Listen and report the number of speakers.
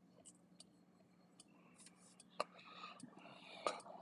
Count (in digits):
0